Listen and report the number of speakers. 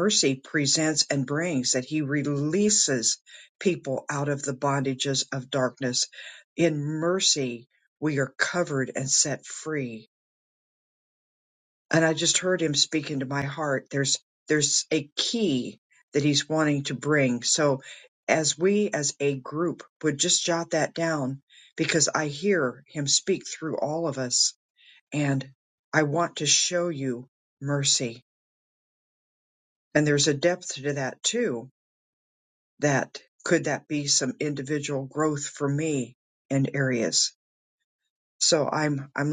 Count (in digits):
1